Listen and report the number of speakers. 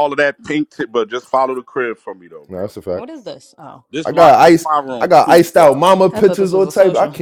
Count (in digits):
3